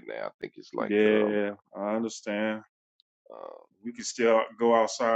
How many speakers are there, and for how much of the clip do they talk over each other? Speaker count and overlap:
2, about 11%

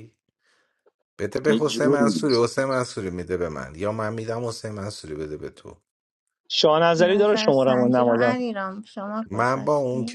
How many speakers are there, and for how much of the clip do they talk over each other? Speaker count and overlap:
3, about 30%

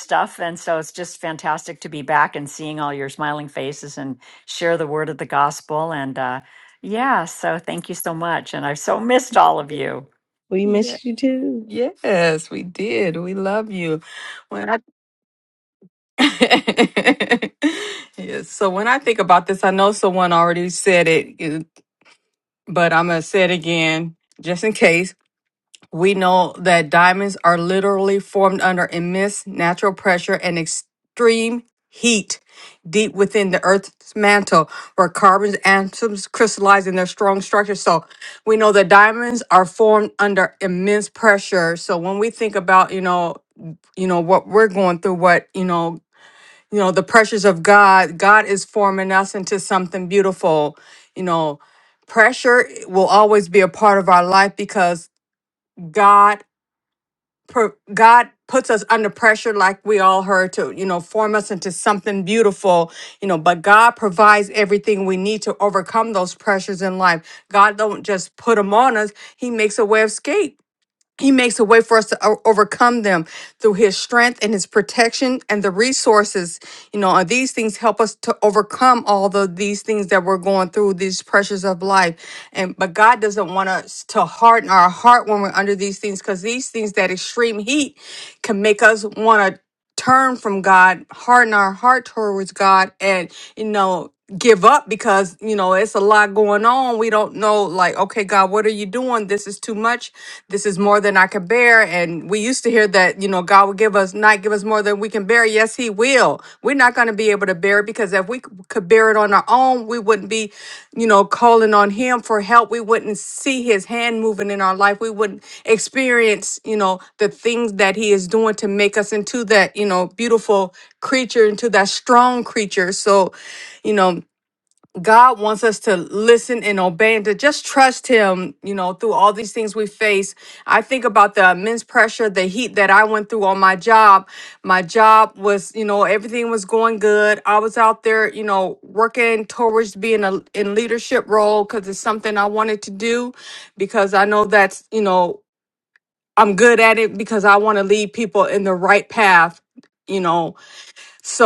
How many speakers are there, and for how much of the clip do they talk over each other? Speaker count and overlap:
3, no overlap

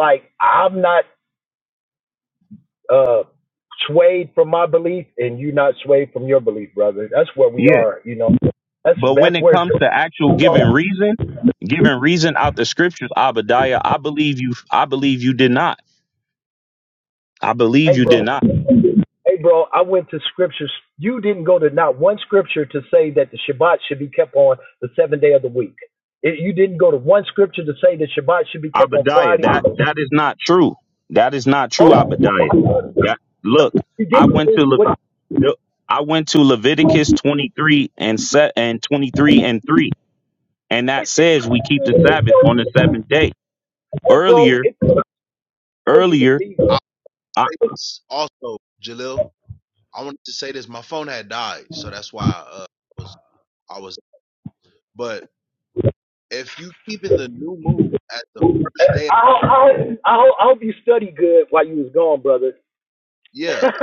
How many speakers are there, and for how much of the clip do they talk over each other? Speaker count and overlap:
3, about 10%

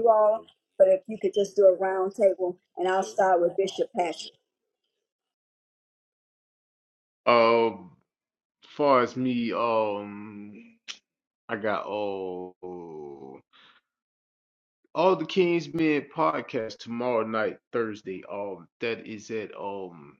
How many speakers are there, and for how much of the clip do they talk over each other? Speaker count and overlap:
2, no overlap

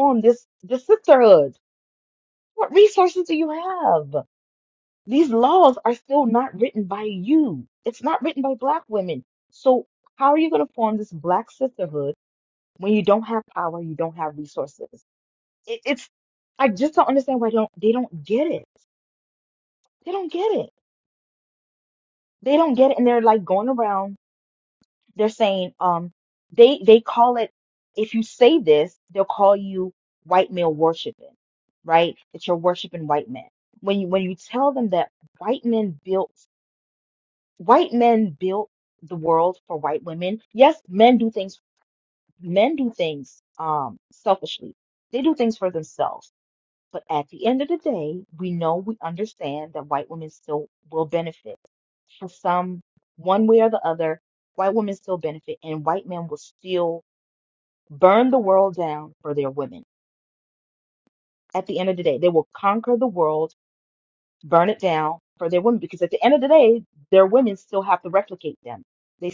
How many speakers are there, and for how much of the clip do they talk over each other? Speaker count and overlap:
1, no overlap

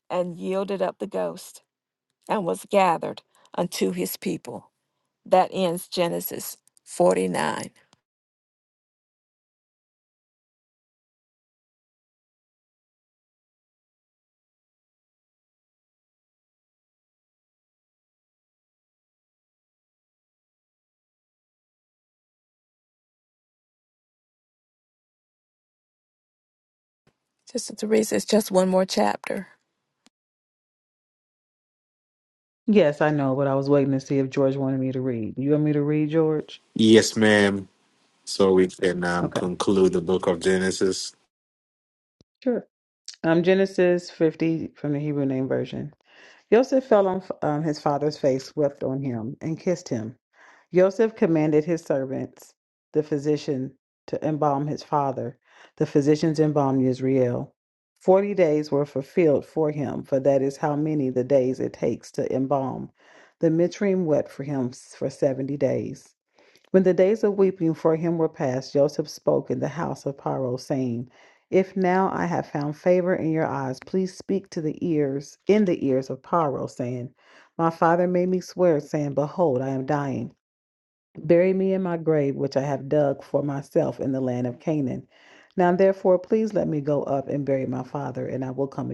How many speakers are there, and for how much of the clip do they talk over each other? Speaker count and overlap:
3, under 1%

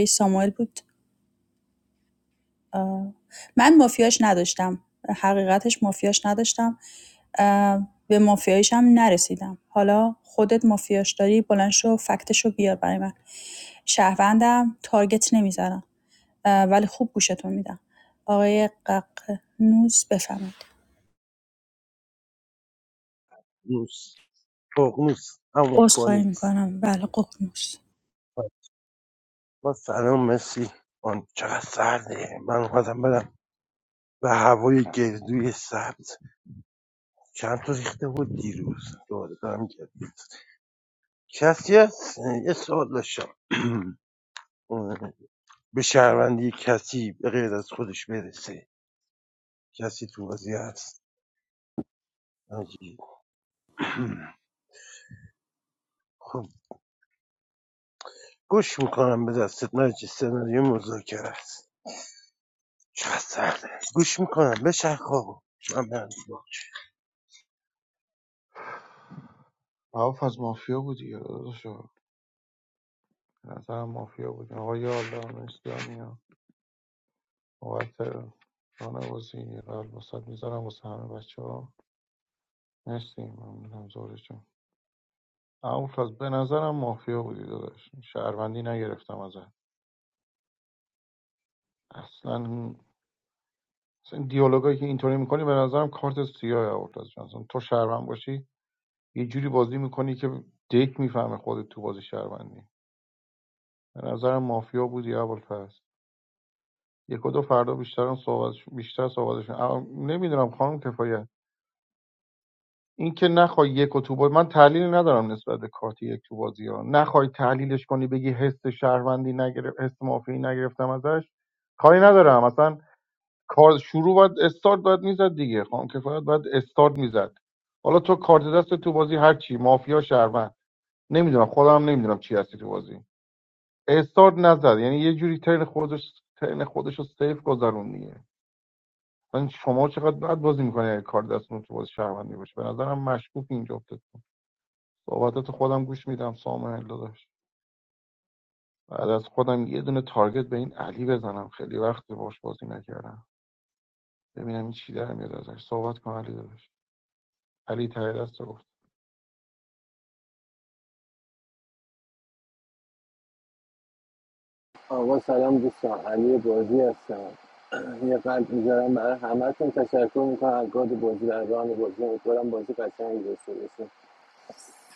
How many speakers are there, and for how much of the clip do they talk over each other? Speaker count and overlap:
4, under 1%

